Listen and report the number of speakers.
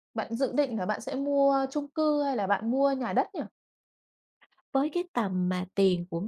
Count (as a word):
two